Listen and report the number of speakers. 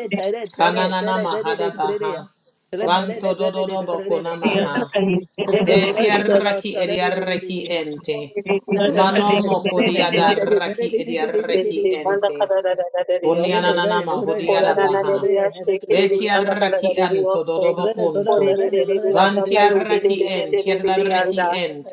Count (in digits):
3